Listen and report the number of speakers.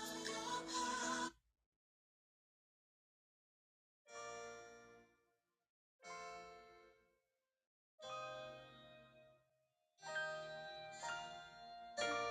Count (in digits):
0